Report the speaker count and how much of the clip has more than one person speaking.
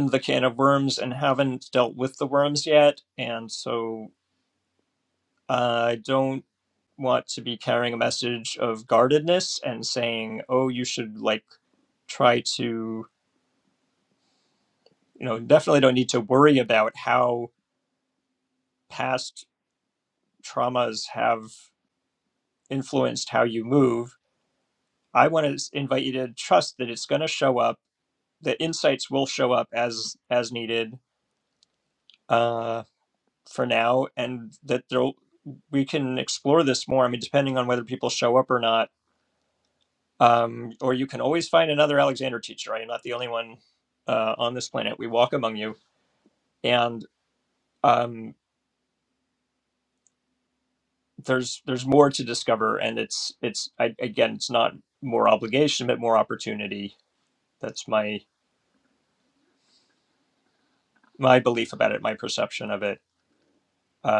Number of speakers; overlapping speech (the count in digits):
1, no overlap